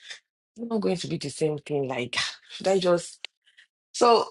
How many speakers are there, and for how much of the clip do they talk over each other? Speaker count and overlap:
1, no overlap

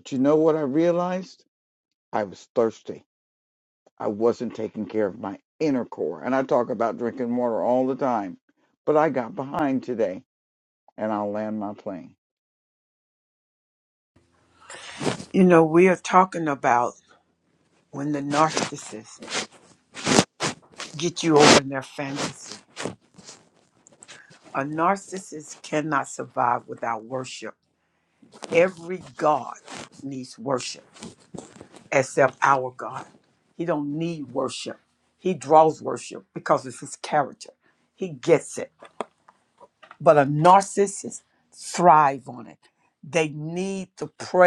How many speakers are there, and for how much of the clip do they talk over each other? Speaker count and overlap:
2, no overlap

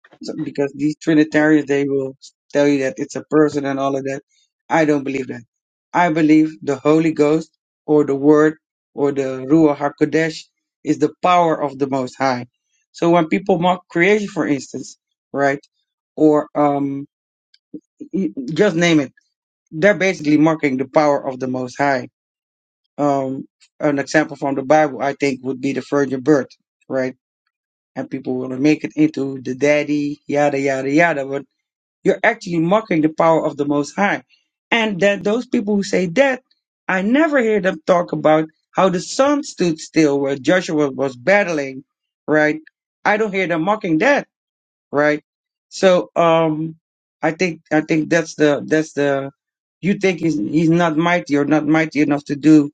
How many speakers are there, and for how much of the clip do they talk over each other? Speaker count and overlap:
1, no overlap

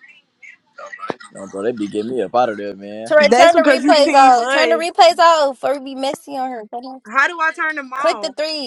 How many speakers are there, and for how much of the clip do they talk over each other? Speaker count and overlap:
3, about 23%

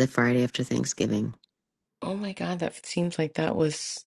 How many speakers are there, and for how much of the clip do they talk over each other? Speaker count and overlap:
2, no overlap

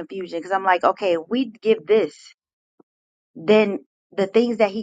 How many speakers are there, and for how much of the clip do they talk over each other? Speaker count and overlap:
1, no overlap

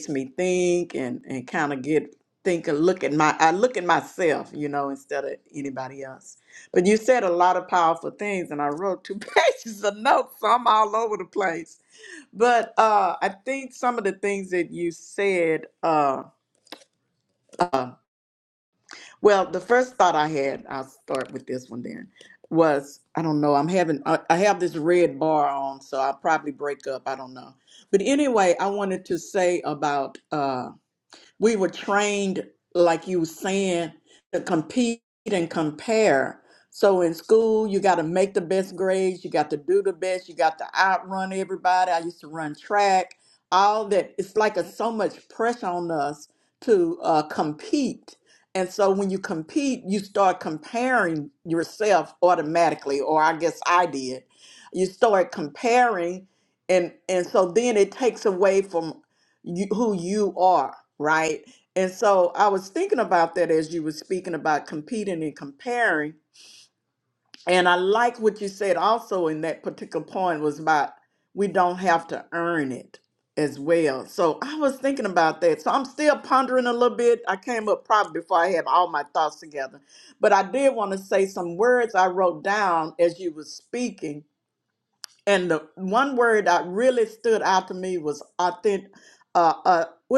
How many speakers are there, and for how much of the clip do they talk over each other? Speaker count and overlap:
1, no overlap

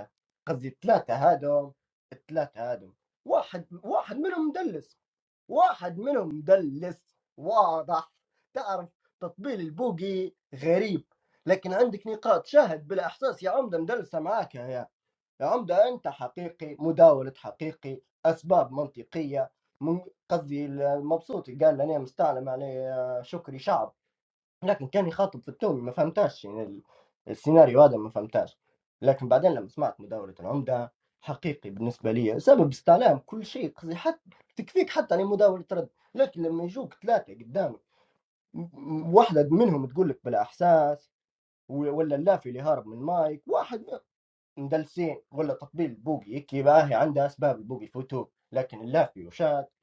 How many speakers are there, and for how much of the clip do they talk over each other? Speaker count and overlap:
1, no overlap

